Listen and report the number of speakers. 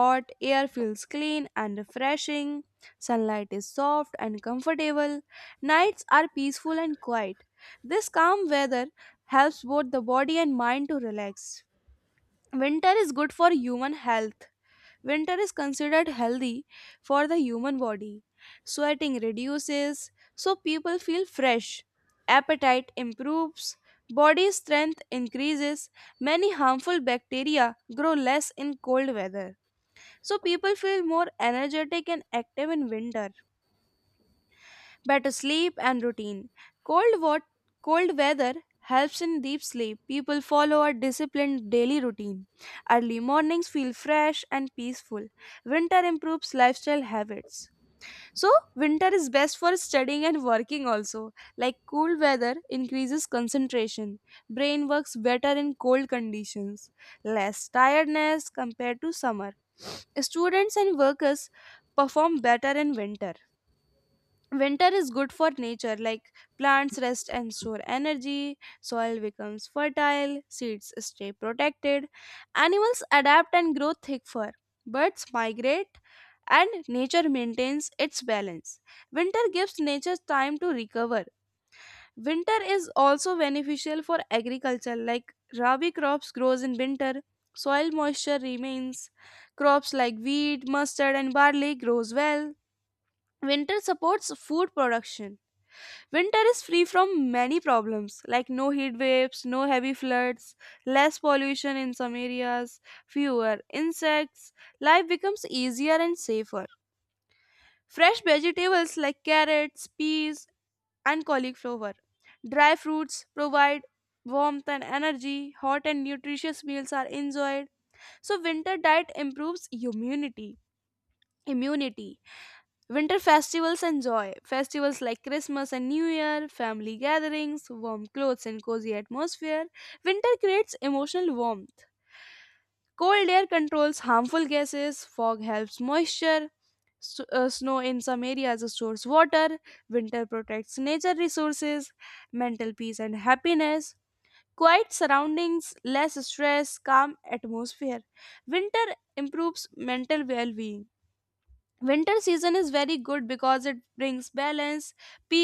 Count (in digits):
1